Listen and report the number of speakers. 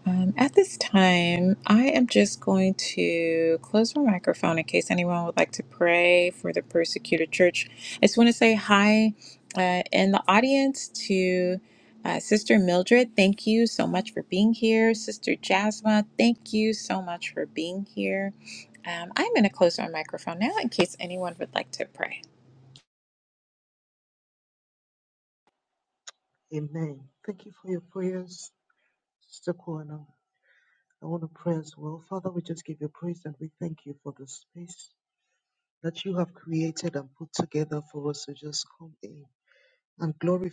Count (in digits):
2